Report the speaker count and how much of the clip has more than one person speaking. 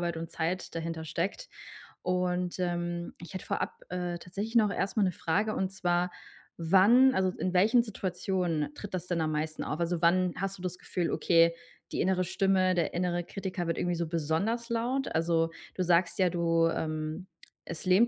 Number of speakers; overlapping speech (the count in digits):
1, no overlap